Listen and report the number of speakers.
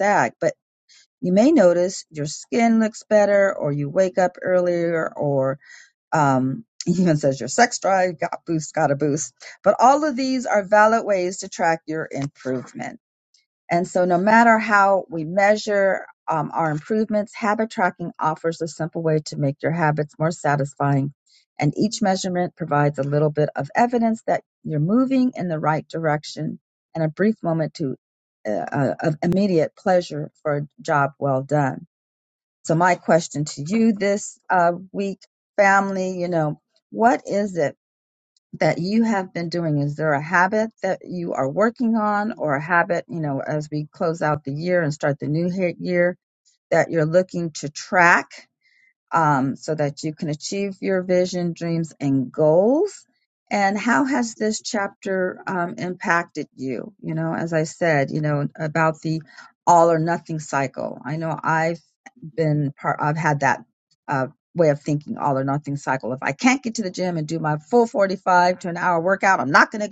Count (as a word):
one